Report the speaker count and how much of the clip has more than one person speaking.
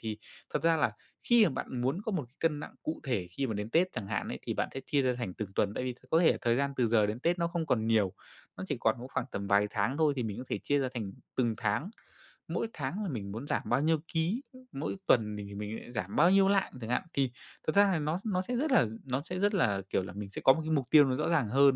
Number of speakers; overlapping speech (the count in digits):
1, no overlap